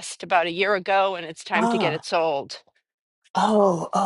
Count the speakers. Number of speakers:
two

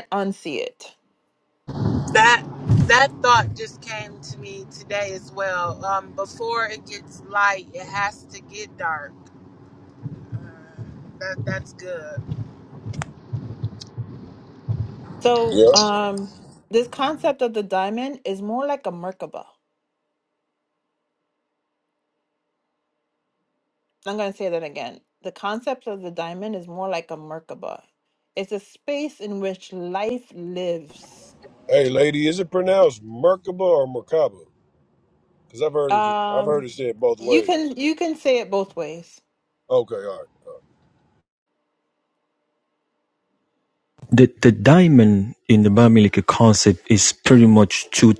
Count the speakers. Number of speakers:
four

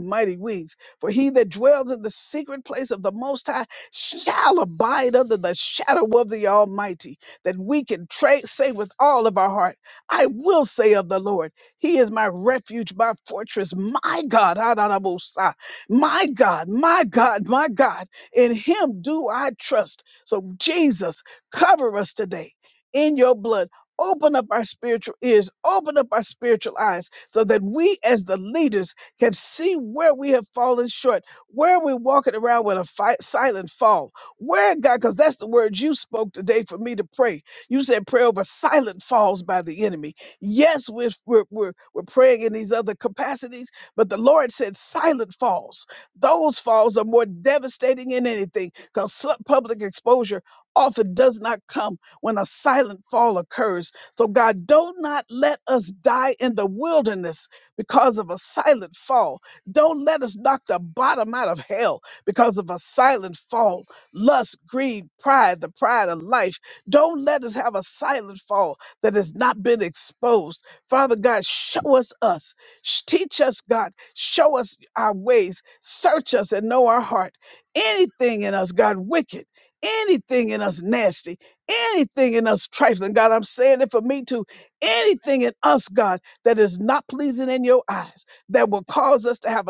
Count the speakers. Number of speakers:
one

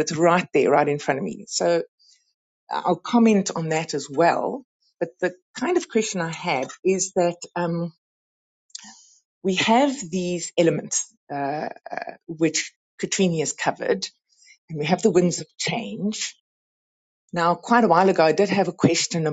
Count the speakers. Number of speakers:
one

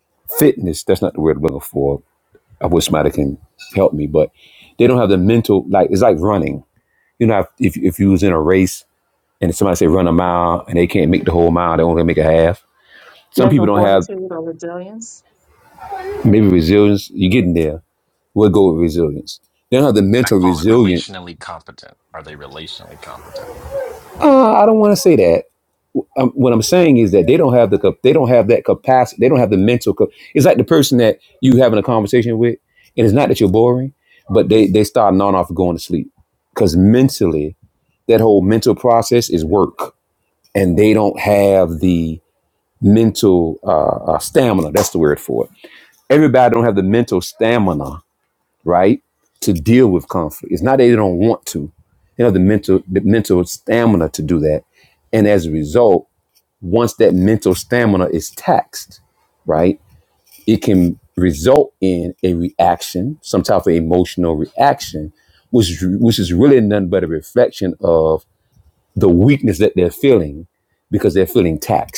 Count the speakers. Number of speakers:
three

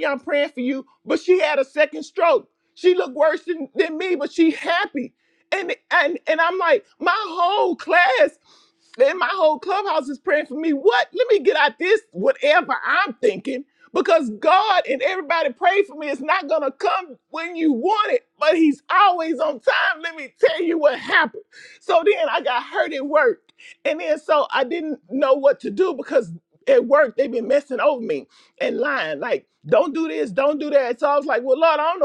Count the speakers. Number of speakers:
one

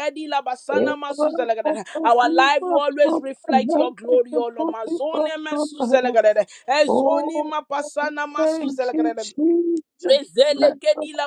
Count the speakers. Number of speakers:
two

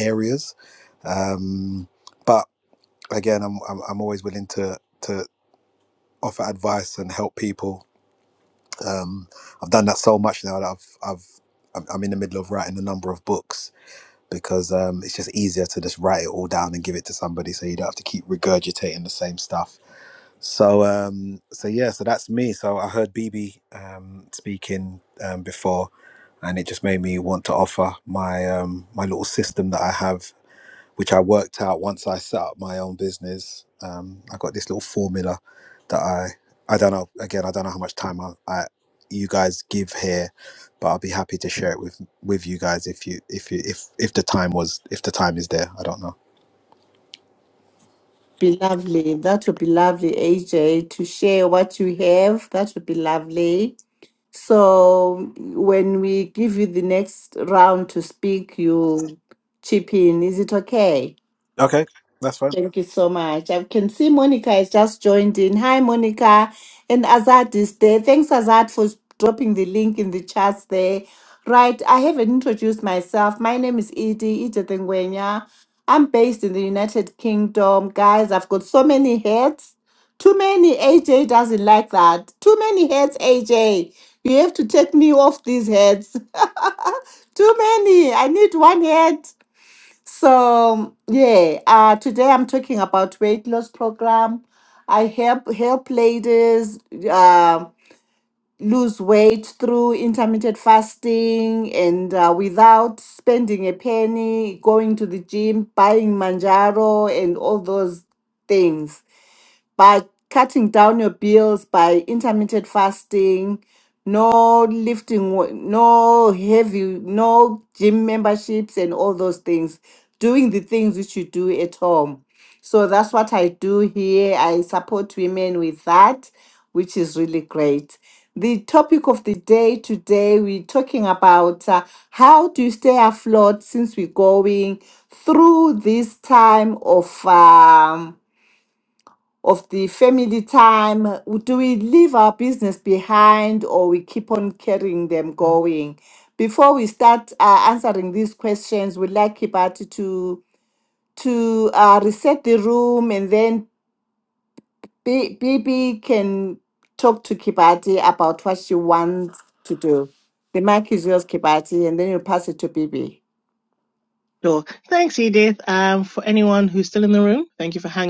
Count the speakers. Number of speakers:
three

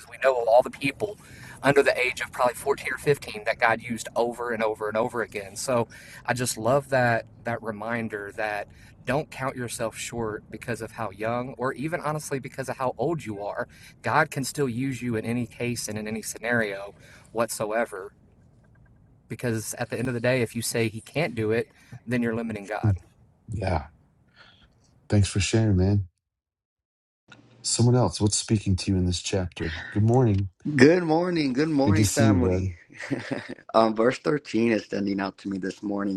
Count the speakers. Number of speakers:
three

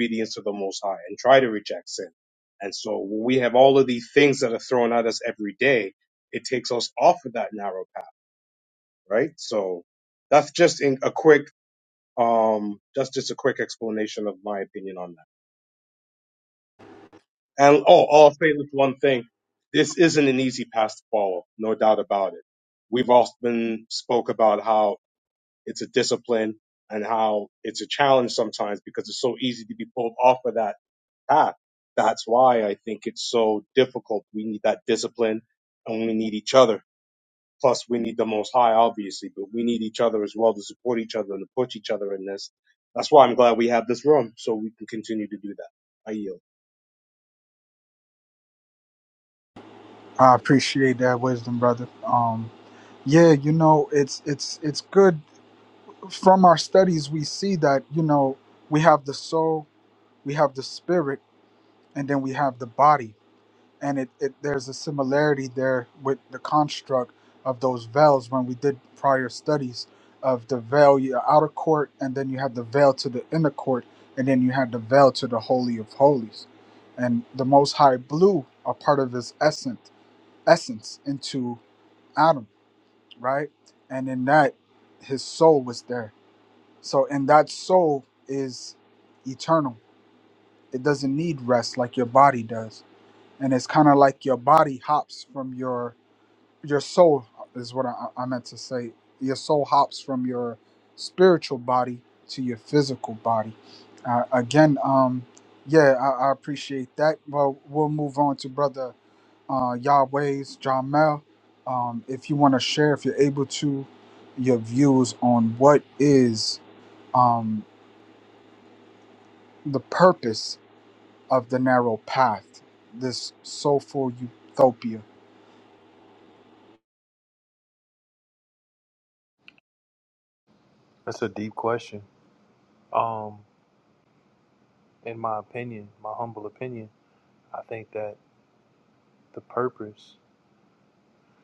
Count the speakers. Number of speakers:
three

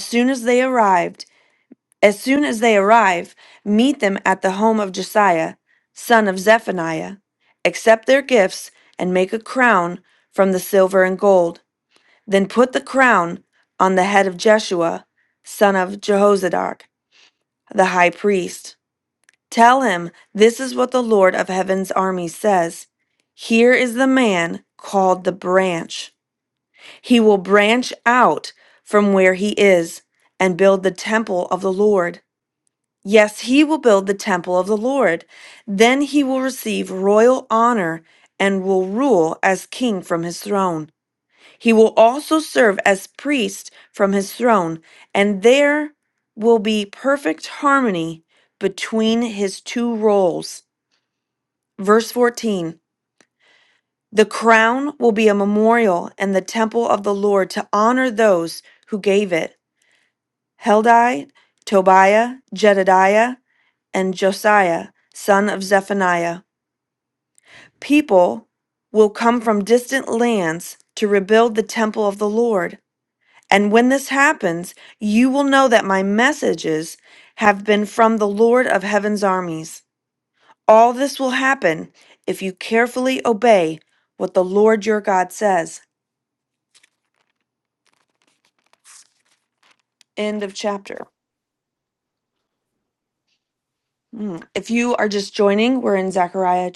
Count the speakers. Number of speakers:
one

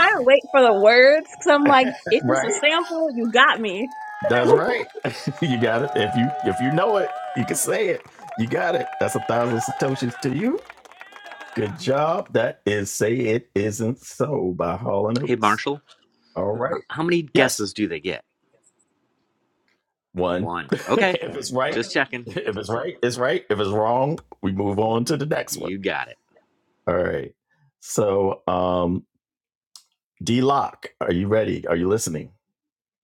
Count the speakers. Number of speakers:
three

